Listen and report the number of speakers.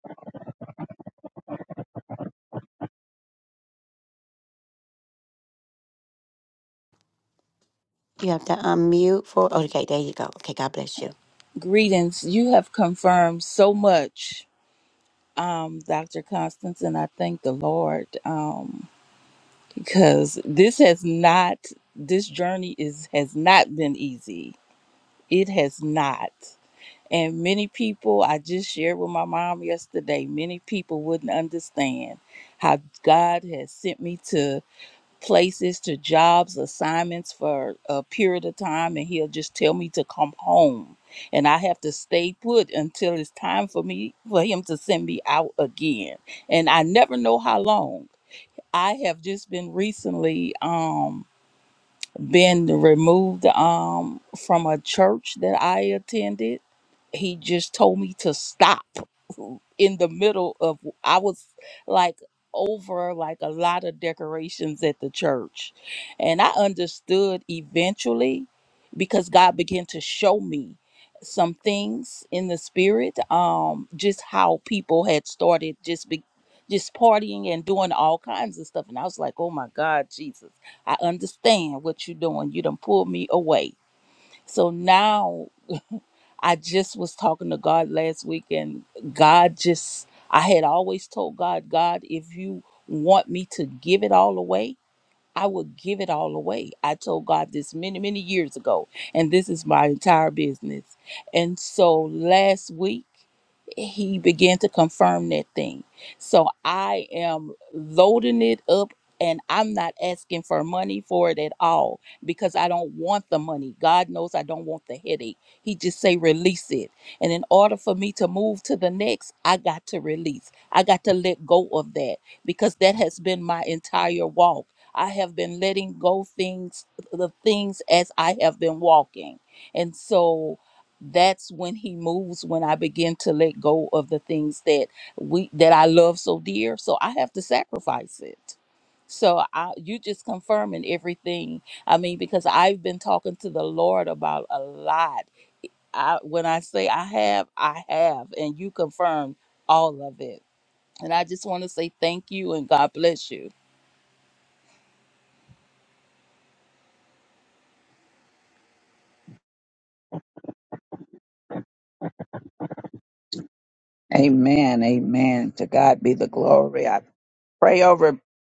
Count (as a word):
three